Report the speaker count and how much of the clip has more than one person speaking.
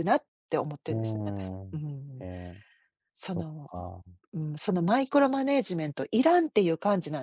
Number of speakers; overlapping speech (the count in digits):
2, about 15%